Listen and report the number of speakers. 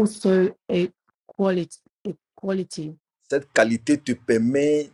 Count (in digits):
2